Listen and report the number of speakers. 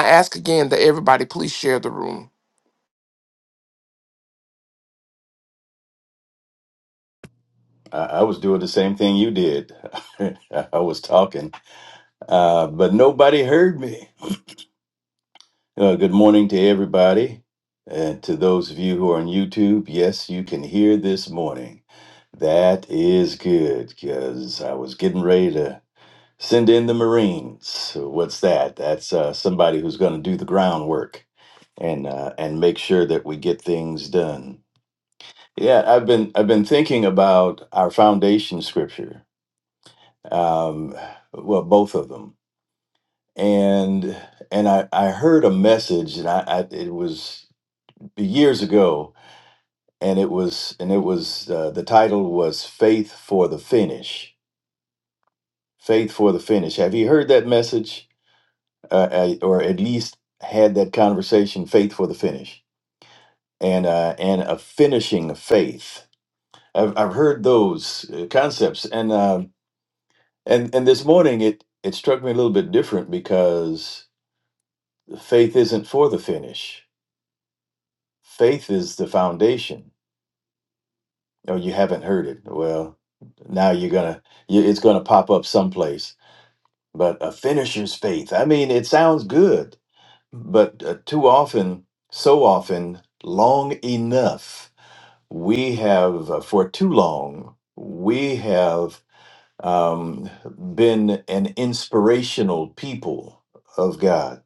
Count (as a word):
two